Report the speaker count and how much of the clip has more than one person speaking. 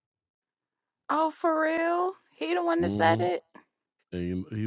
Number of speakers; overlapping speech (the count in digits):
2, about 11%